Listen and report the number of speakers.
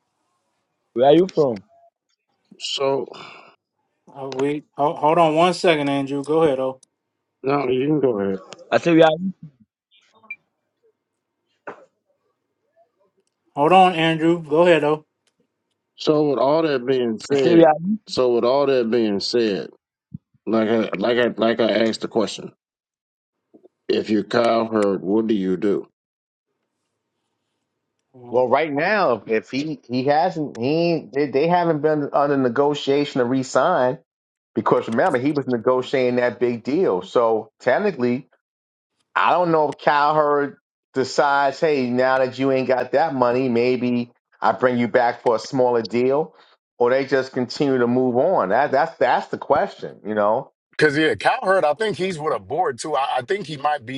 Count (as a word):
five